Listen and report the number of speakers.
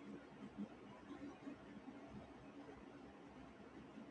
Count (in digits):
0